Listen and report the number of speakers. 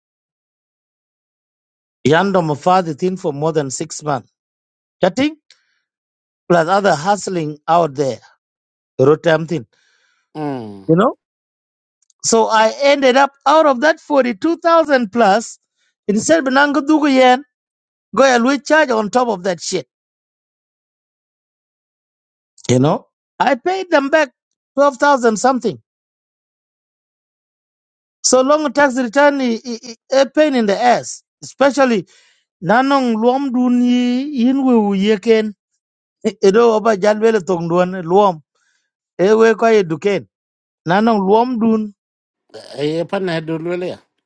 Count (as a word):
two